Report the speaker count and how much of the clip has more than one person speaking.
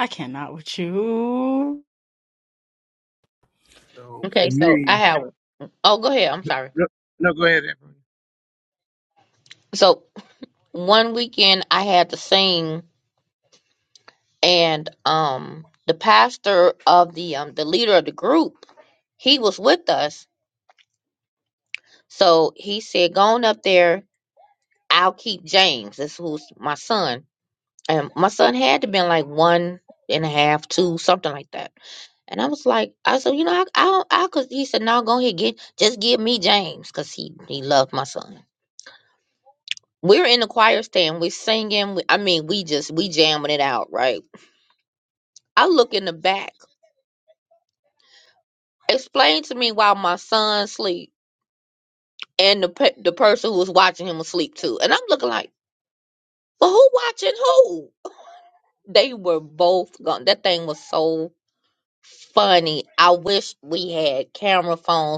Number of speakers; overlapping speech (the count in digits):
3, about 1%